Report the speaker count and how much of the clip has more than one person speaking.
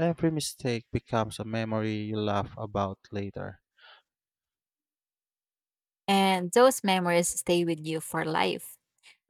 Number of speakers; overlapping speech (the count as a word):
two, no overlap